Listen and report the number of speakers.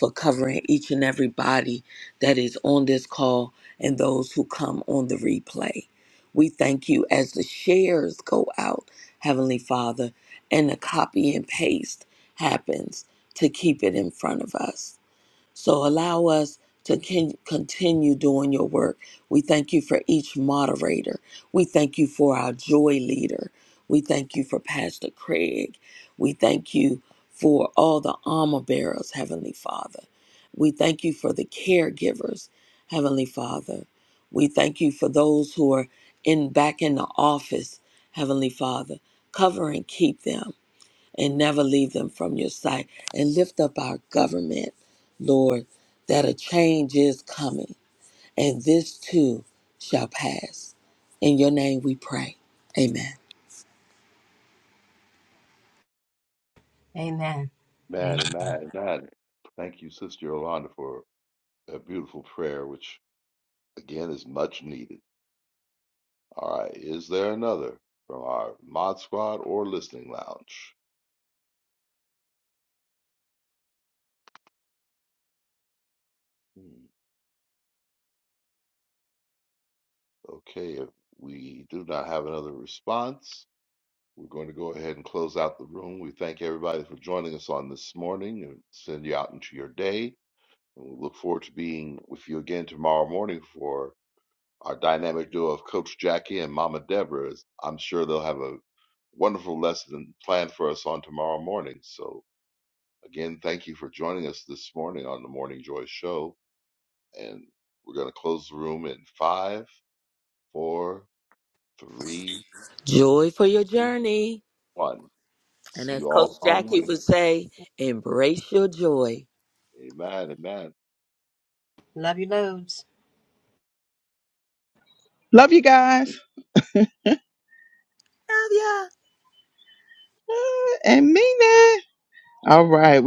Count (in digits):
4